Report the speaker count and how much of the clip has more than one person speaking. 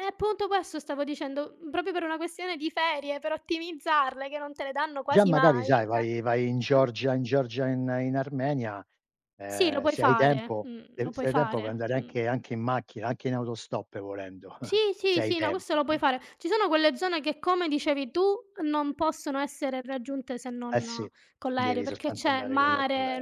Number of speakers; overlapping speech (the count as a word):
two, about 27%